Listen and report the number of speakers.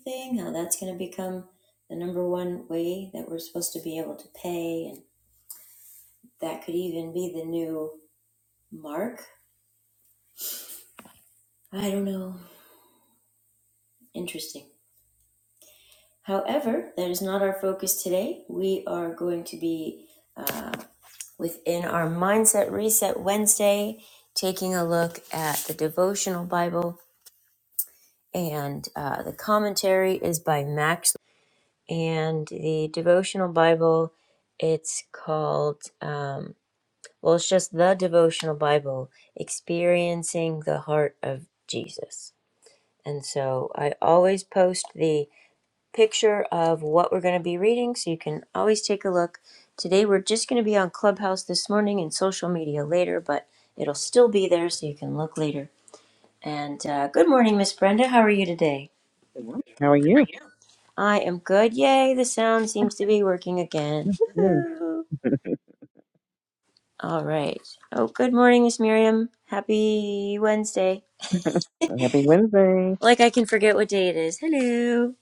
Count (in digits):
2